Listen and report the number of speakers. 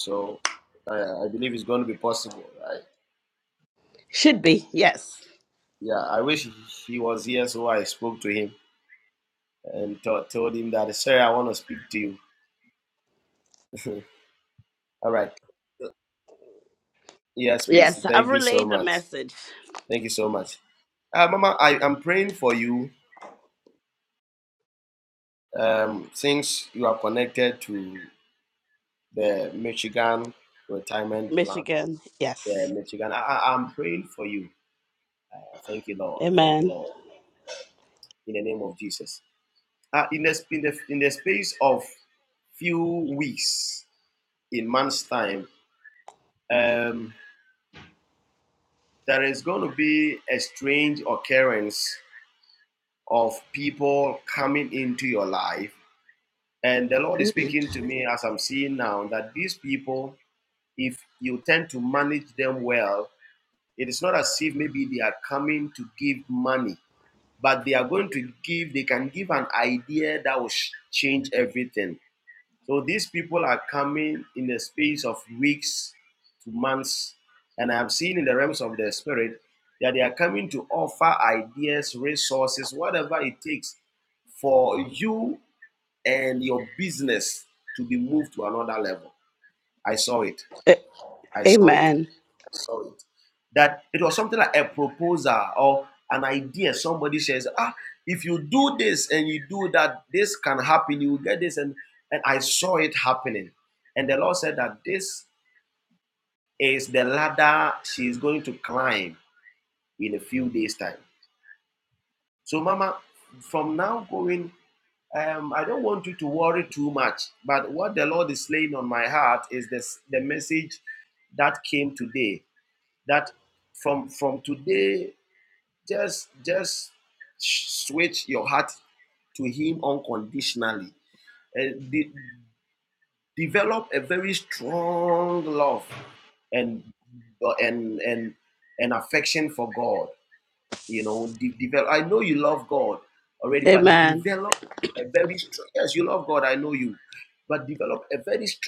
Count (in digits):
2